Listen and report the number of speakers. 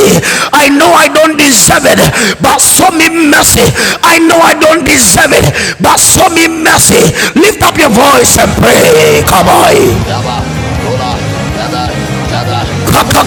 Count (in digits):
1